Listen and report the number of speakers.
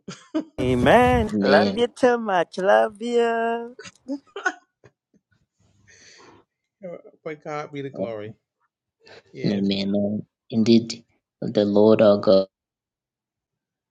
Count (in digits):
3